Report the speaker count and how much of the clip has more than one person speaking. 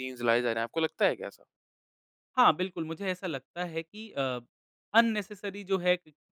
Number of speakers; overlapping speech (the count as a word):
two, no overlap